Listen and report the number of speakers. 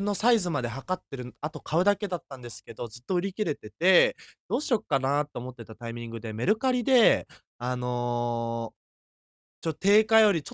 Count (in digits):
1